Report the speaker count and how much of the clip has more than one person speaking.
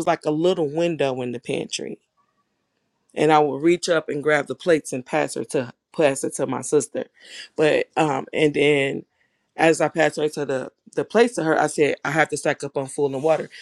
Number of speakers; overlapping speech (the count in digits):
1, no overlap